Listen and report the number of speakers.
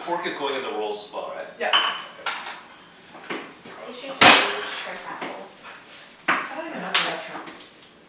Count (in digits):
3